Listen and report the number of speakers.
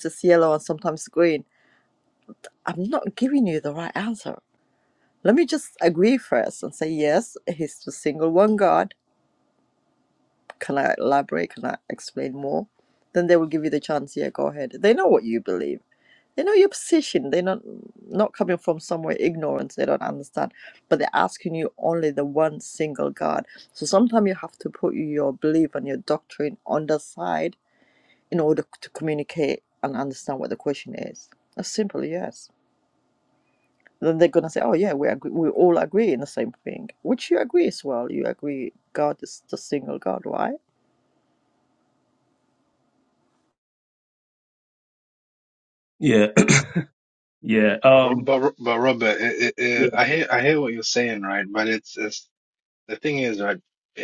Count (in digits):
3